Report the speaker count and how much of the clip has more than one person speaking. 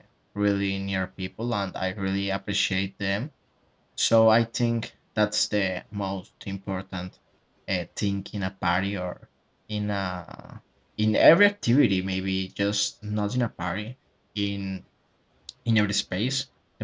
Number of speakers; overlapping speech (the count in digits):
1, no overlap